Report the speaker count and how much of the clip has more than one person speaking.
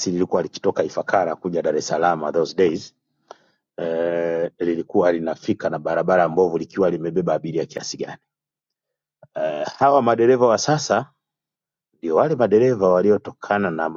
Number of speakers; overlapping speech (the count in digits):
1, no overlap